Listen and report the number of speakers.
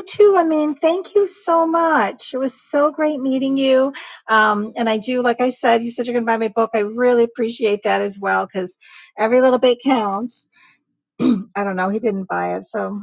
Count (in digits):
1